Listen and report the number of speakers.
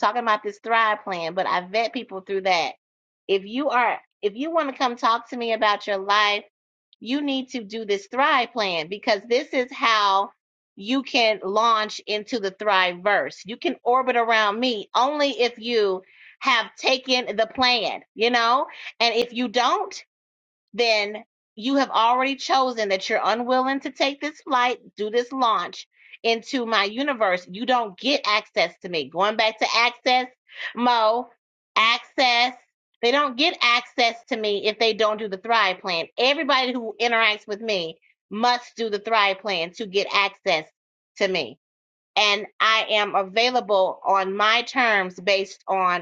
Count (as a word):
one